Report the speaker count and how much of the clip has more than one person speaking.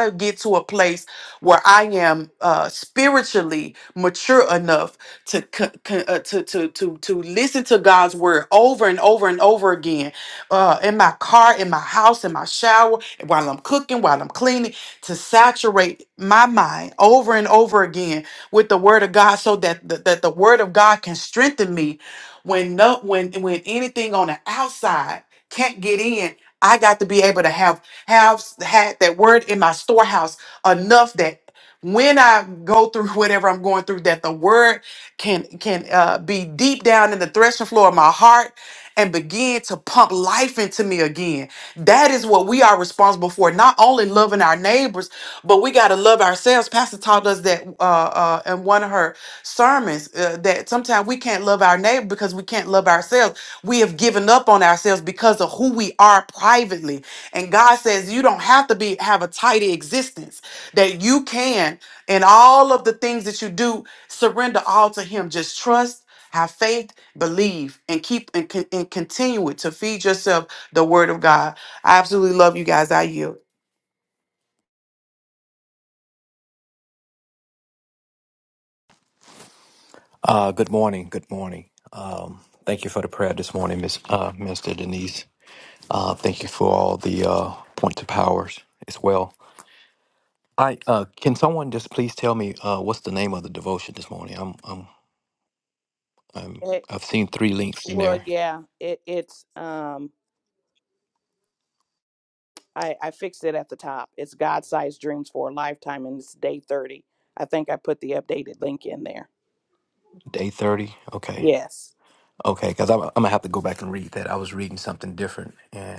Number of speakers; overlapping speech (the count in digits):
3, about 1%